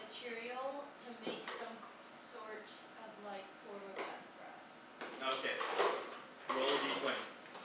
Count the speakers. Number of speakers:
two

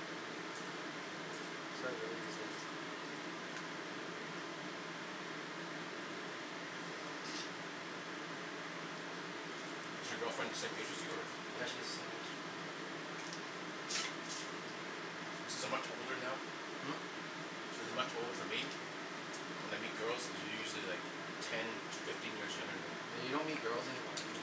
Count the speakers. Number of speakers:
two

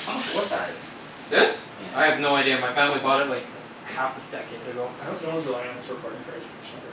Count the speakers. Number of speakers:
three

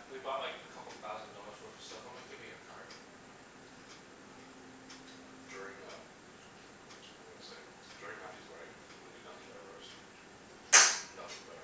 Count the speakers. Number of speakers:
two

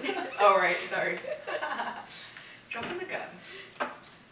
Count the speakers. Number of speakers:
one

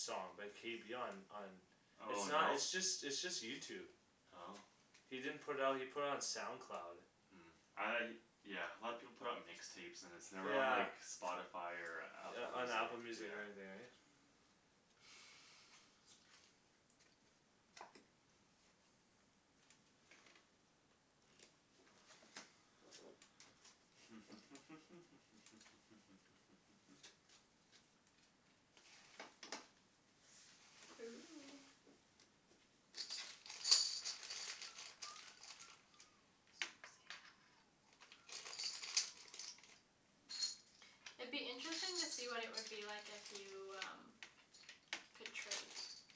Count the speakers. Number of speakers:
three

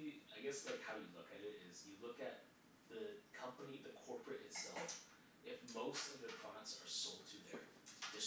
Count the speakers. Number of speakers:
one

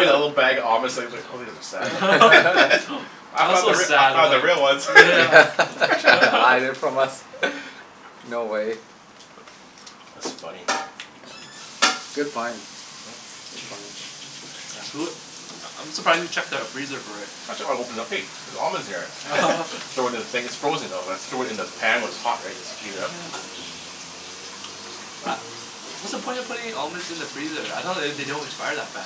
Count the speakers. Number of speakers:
three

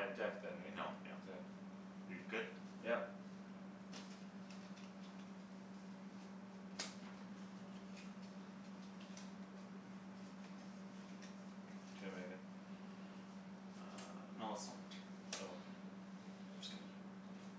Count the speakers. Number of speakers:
two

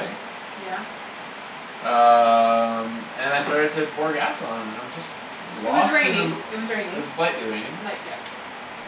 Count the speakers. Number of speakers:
two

